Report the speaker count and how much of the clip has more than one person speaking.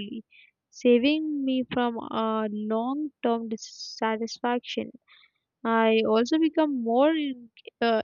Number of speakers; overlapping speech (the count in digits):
1, no overlap